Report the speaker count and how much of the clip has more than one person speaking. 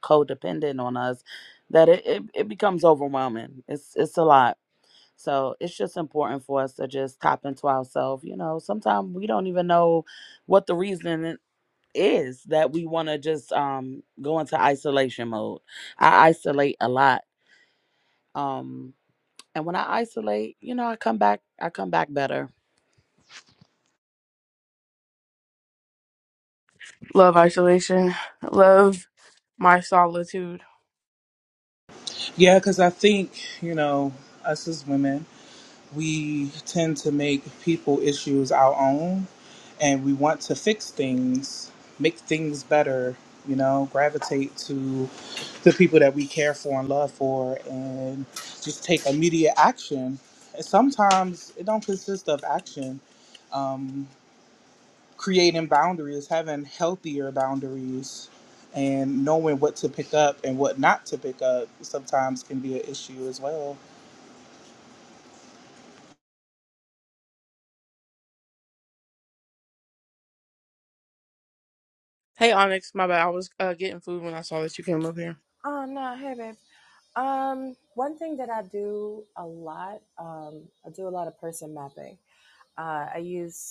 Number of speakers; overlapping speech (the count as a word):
four, no overlap